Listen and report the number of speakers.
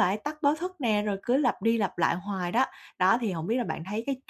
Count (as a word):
one